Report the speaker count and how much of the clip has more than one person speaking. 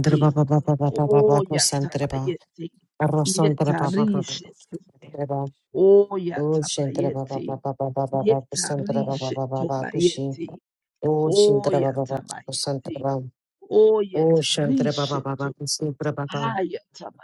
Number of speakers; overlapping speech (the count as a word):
two, about 30%